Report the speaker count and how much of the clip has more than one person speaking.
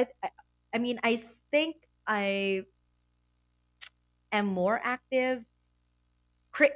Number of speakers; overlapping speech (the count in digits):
1, no overlap